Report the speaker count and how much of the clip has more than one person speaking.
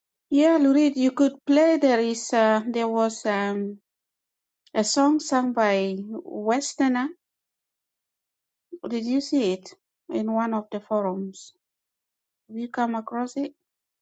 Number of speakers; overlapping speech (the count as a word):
one, no overlap